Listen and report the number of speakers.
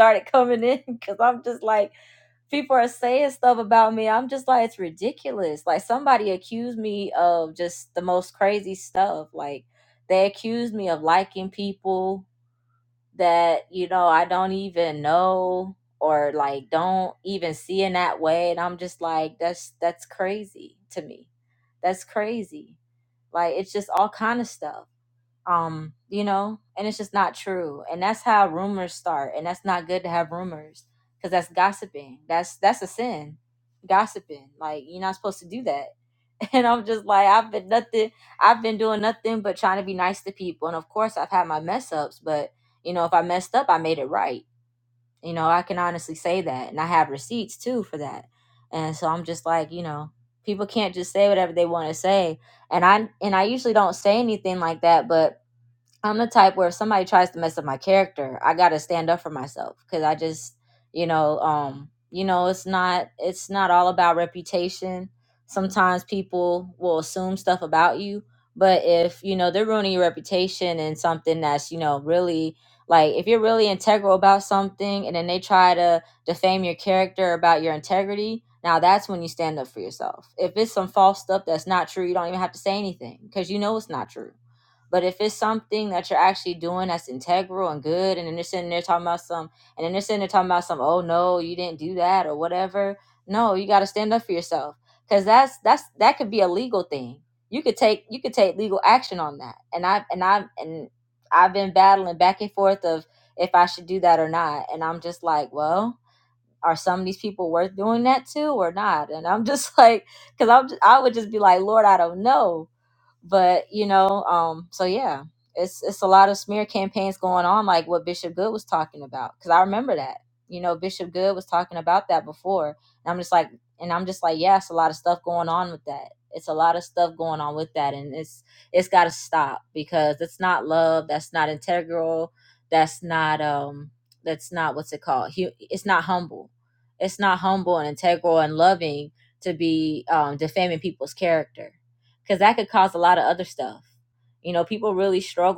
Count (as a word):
one